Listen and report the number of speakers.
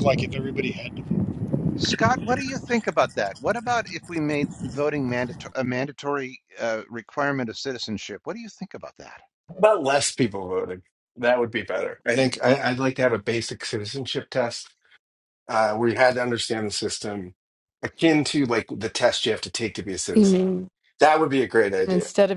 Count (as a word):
four